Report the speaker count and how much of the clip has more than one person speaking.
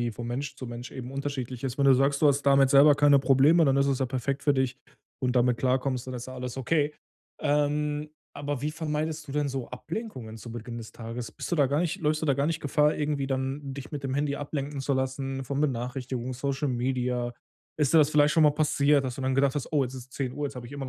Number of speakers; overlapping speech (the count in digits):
1, no overlap